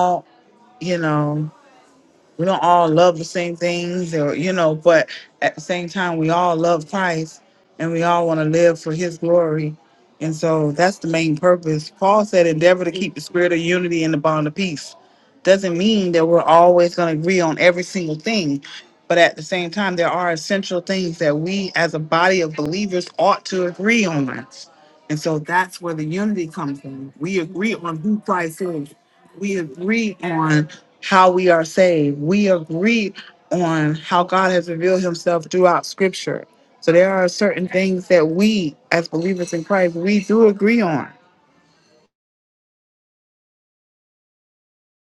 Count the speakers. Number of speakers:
one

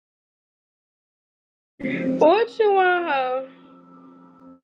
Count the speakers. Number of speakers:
one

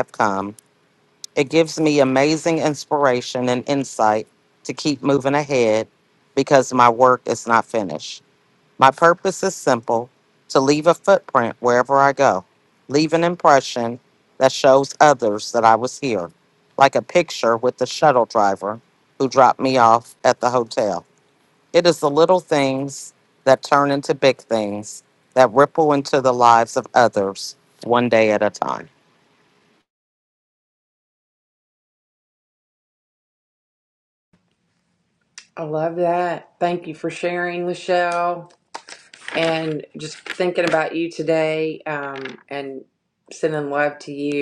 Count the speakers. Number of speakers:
two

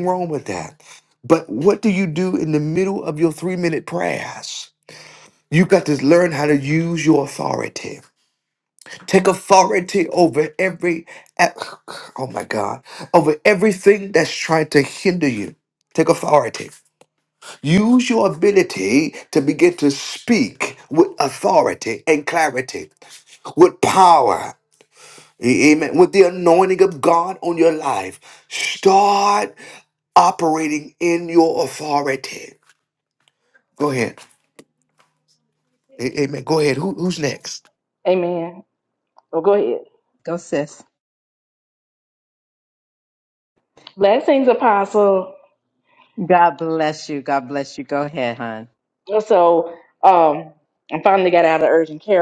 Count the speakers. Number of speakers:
three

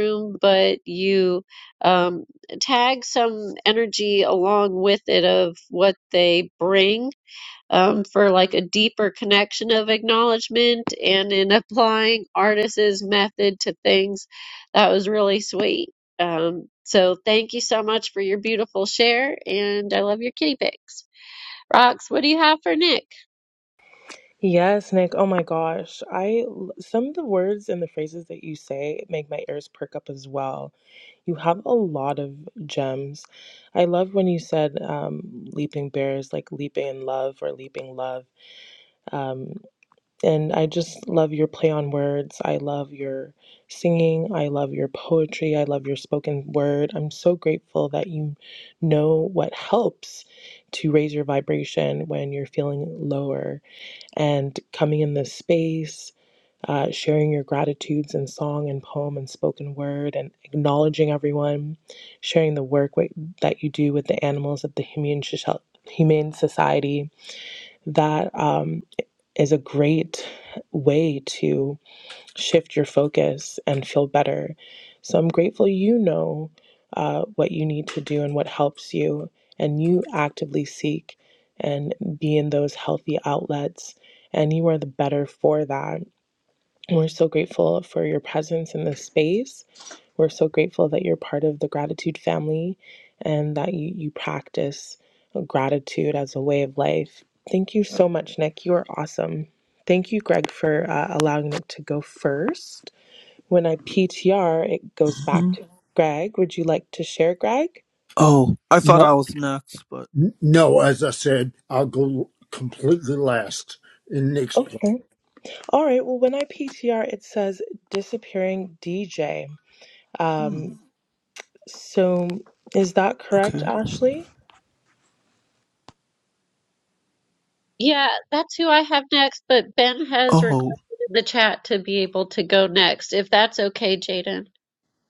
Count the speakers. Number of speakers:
four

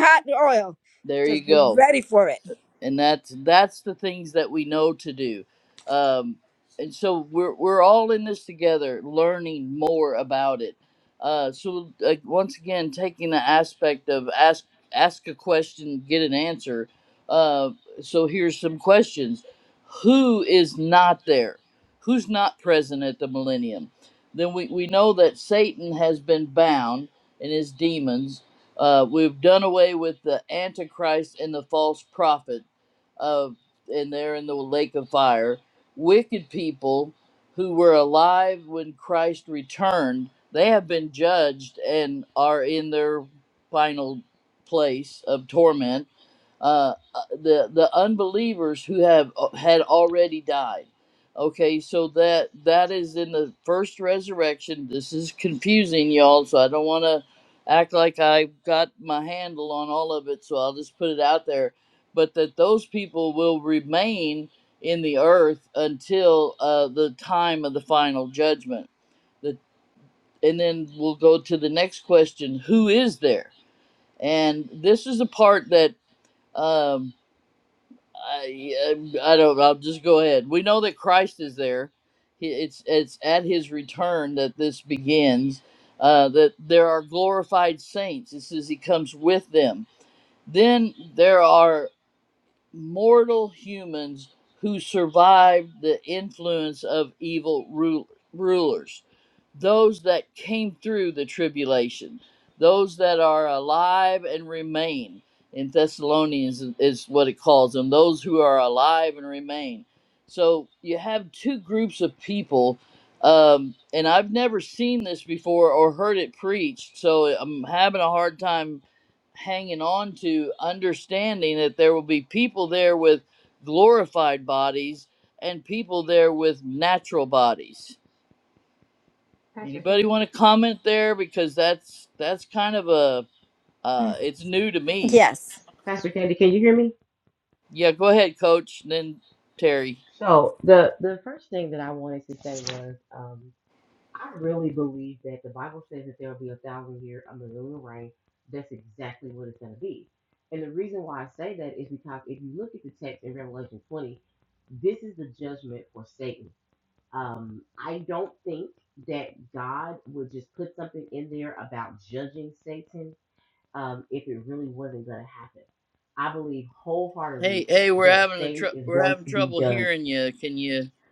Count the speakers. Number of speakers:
three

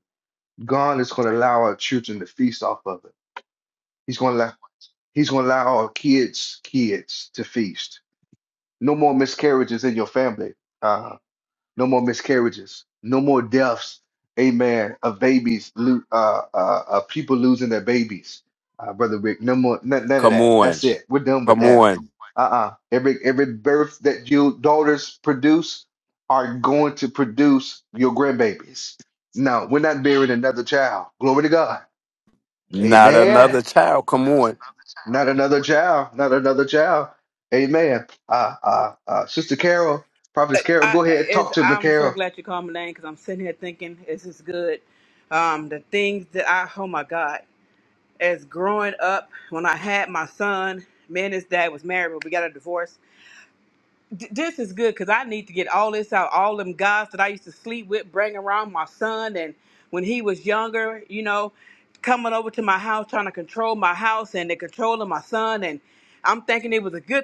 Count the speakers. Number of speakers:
three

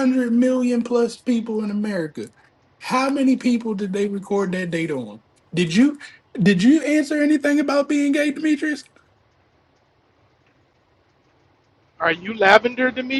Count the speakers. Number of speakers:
two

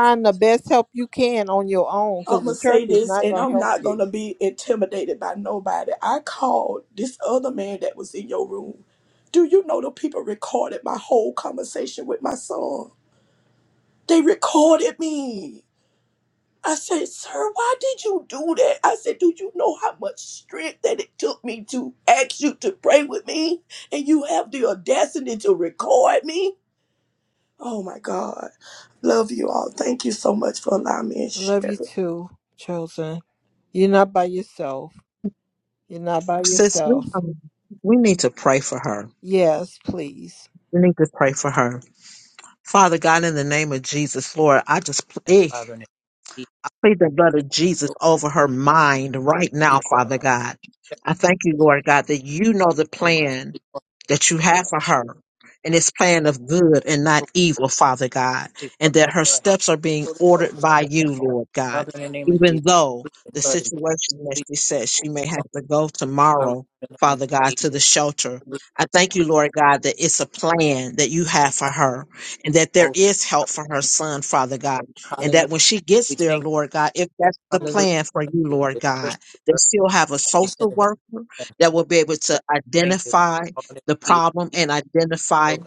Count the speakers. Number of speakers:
four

